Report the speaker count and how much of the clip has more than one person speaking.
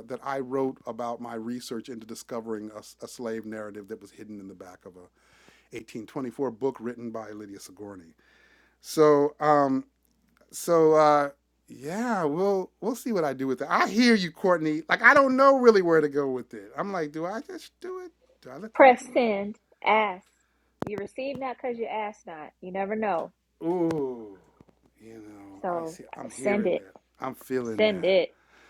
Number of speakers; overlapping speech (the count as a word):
two, about 5%